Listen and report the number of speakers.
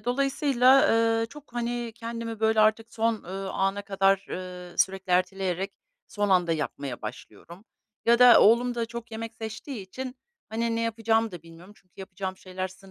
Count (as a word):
one